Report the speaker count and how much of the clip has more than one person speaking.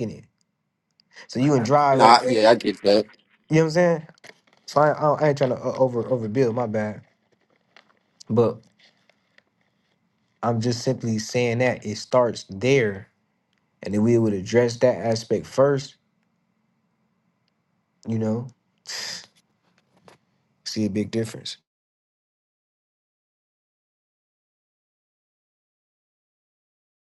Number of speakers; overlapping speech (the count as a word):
two, about 2%